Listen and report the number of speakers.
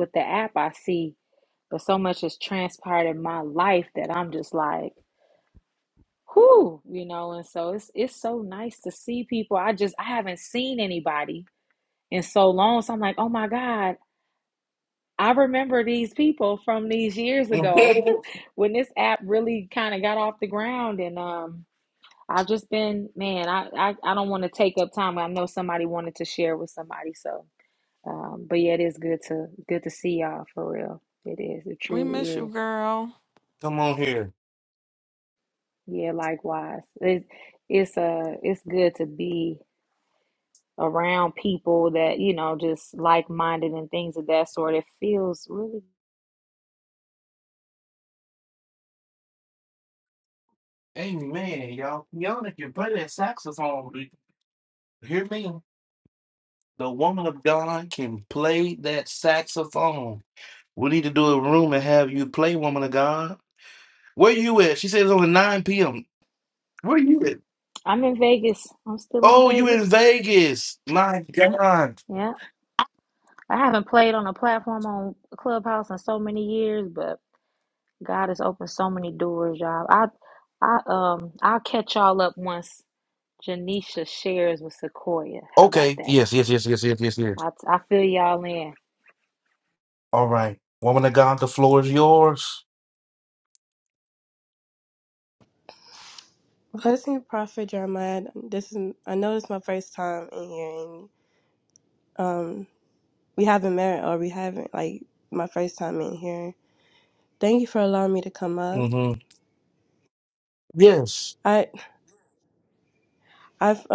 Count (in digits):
4